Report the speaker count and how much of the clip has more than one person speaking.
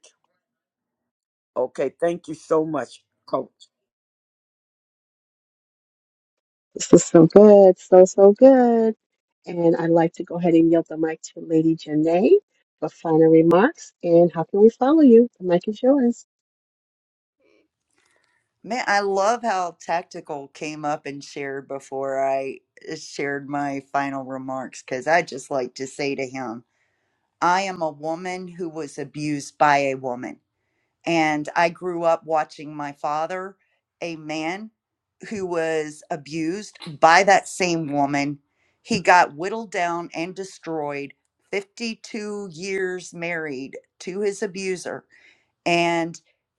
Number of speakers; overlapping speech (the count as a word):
three, no overlap